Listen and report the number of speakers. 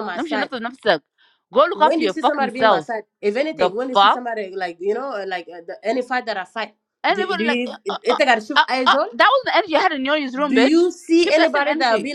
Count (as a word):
two